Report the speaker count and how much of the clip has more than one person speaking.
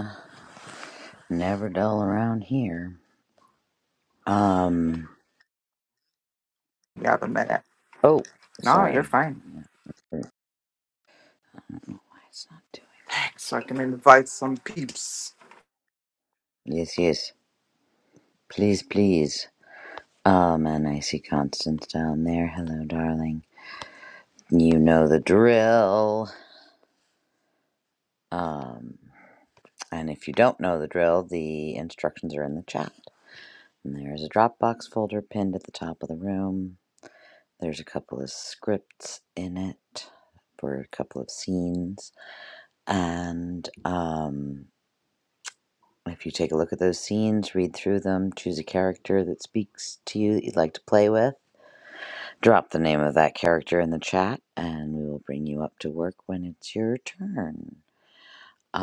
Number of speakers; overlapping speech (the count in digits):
2, about 1%